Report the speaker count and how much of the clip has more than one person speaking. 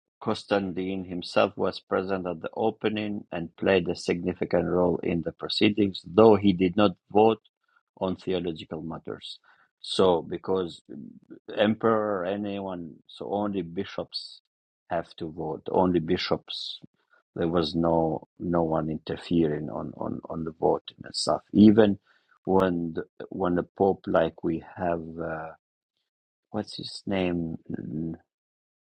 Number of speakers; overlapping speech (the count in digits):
1, no overlap